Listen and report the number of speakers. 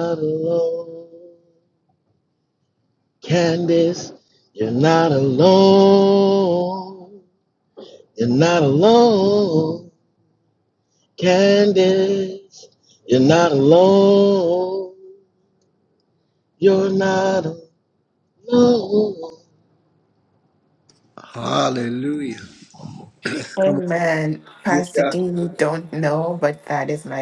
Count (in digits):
3